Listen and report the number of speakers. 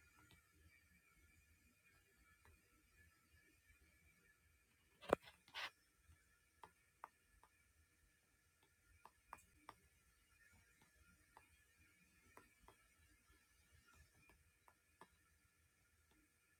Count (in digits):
0